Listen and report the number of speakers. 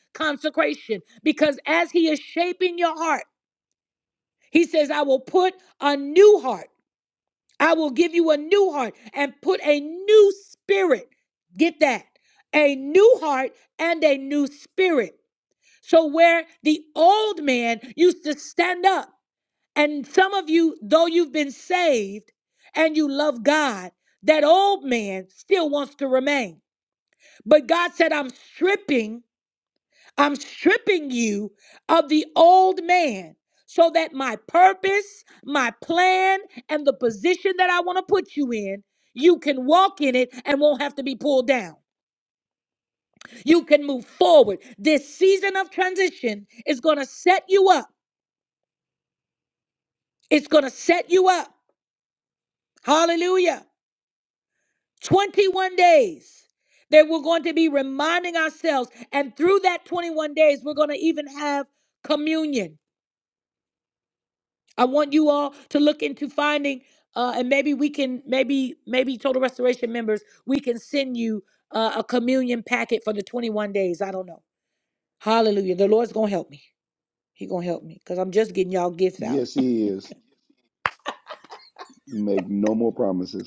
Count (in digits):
2